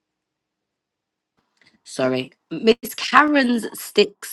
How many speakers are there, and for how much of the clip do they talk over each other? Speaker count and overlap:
one, no overlap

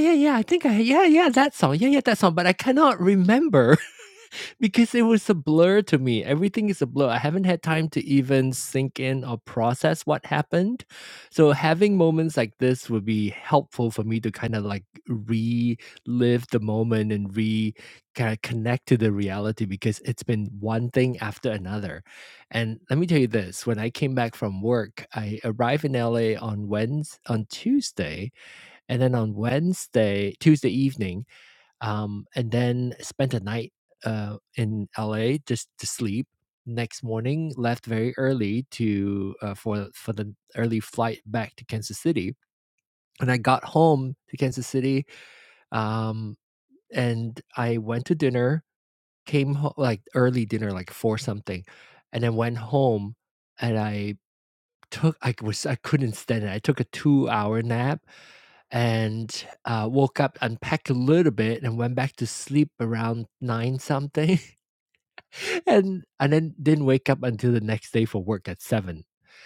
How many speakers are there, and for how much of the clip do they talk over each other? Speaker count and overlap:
one, no overlap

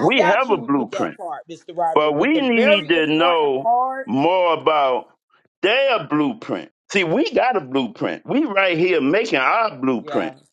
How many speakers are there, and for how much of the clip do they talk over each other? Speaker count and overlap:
two, about 30%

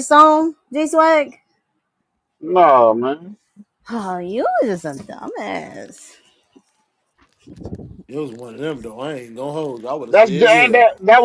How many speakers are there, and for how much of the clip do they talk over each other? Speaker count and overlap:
three, about 6%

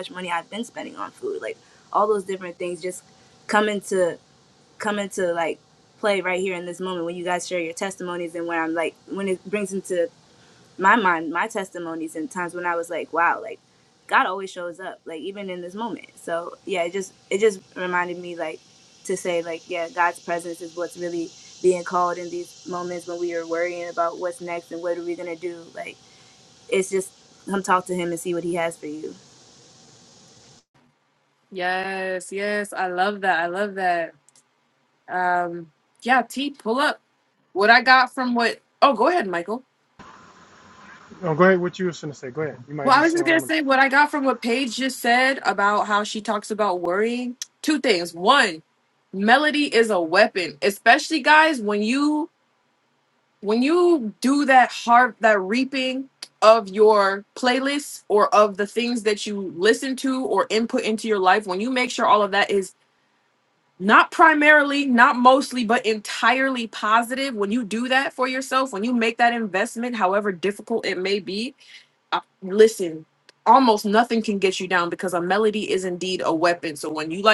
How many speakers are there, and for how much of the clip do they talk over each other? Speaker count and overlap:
three, about 1%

